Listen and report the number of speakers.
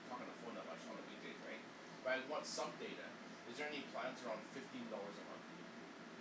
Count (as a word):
one